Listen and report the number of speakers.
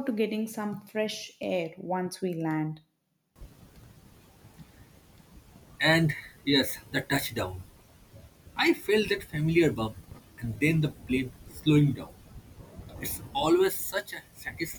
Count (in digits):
2